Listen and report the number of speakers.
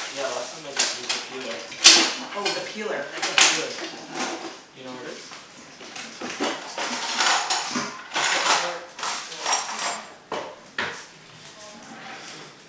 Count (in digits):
2